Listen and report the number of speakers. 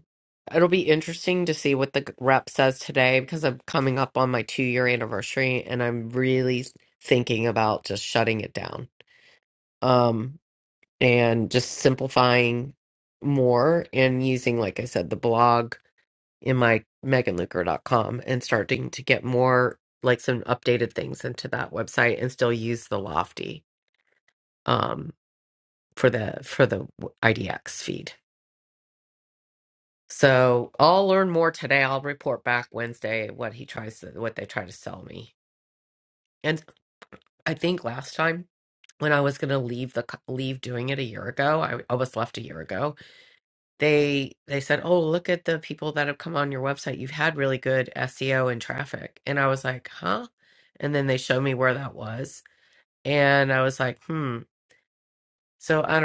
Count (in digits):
1